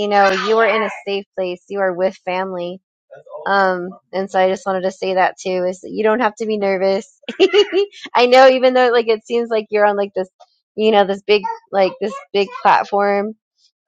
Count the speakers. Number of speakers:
1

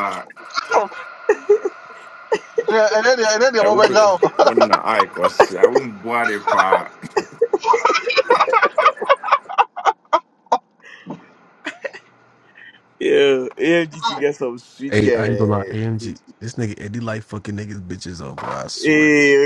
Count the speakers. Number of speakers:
4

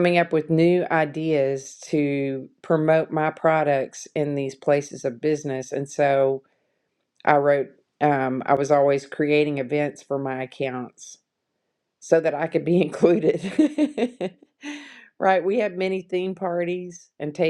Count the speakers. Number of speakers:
1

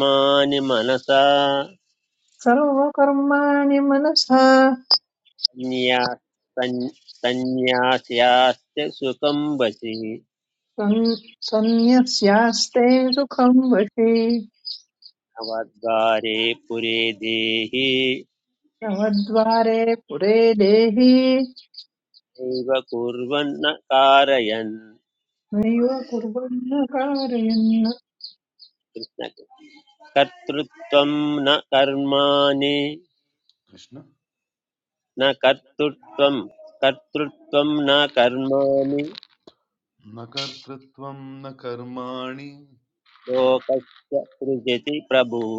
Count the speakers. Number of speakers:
3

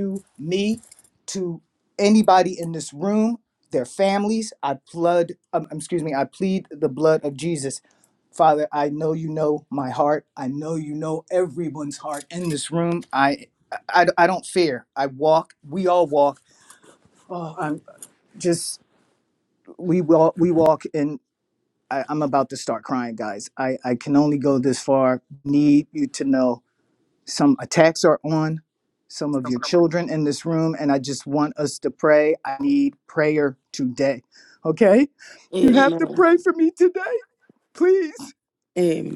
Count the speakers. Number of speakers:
2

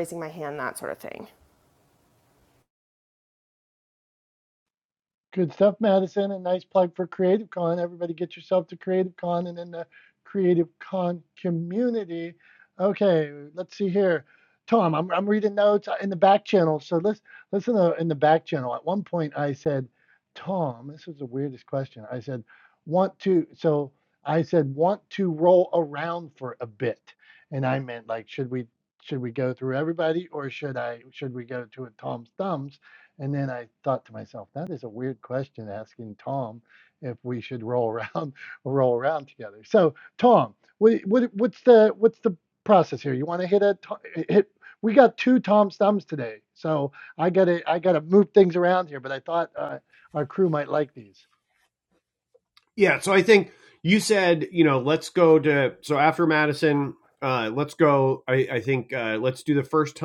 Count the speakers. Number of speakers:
3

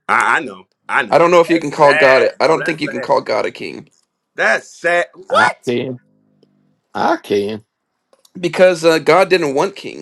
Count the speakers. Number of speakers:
3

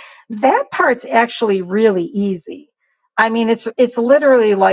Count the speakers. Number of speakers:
1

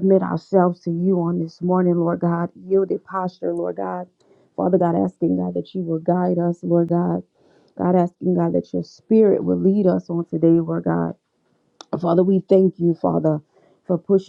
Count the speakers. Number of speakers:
1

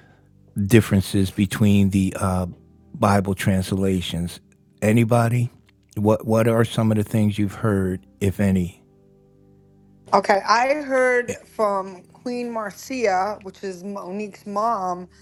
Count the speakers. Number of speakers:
2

